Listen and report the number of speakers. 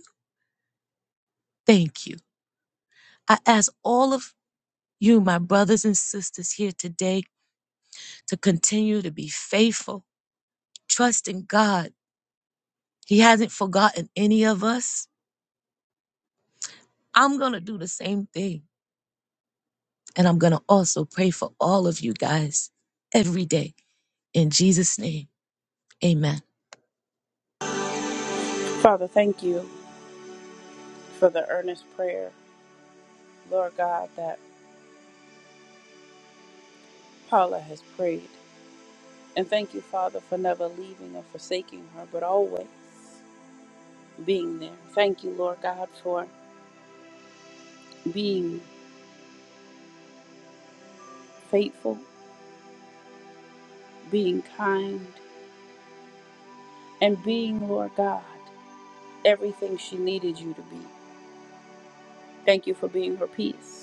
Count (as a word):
two